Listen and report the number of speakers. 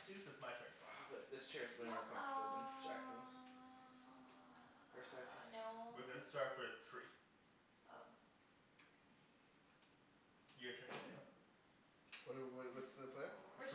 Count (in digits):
4